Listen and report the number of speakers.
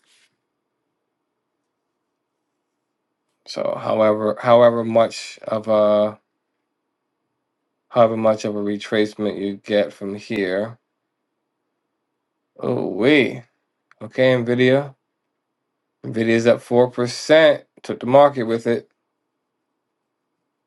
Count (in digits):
1